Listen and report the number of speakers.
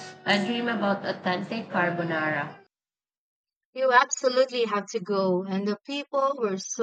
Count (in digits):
2